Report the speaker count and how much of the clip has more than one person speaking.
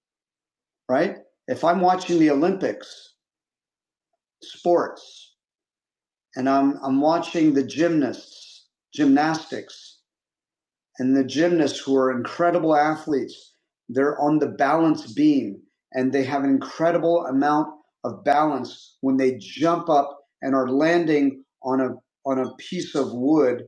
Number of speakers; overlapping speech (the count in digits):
1, no overlap